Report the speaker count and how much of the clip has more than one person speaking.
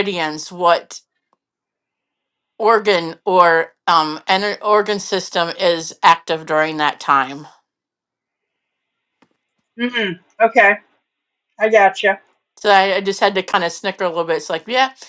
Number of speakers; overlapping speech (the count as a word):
two, no overlap